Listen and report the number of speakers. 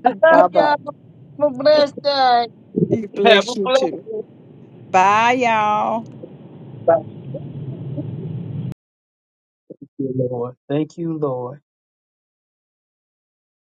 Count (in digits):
3